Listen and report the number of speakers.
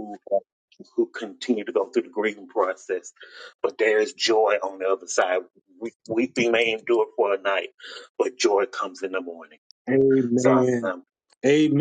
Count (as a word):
two